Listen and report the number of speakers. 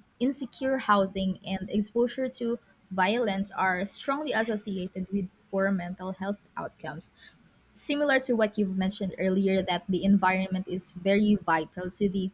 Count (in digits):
1